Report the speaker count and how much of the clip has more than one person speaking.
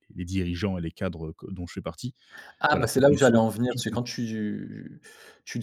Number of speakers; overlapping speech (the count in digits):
2, about 23%